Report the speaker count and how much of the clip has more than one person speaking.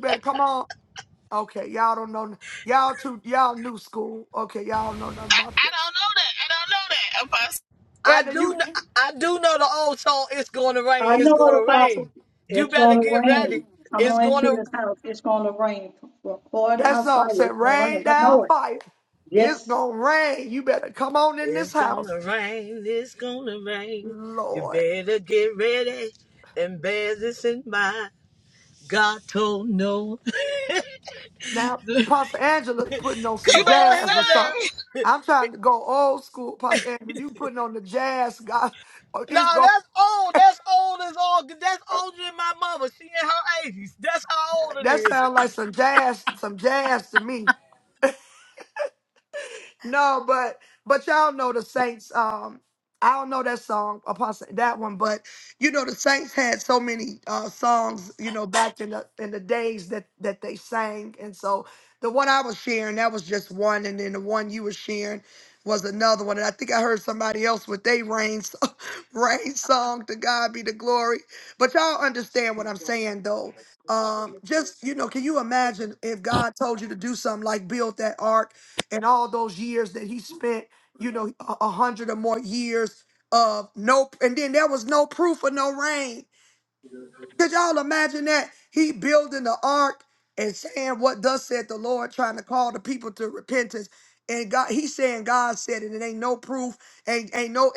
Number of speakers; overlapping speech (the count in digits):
4, about 7%